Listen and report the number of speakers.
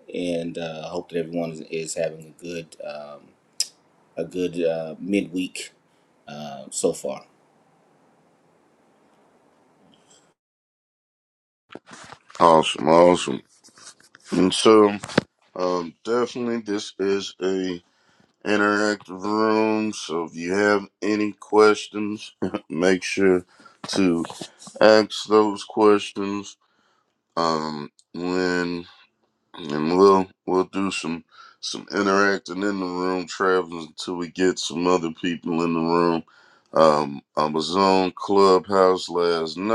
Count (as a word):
two